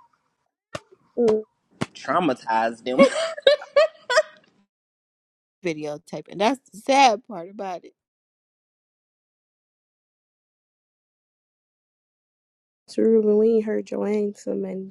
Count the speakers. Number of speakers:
three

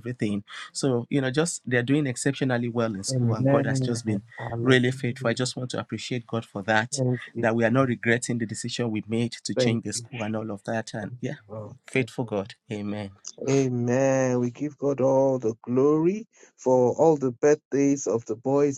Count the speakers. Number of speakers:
two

